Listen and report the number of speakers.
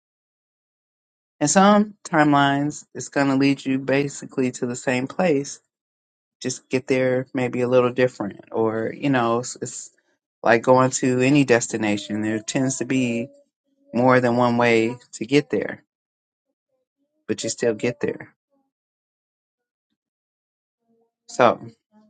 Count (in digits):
1